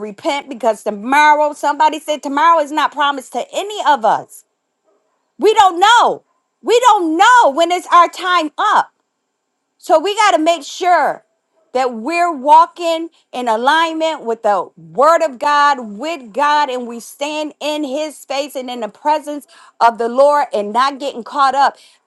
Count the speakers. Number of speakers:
1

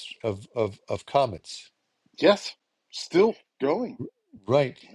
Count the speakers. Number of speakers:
2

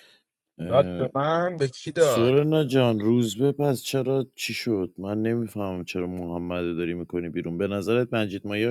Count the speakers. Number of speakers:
2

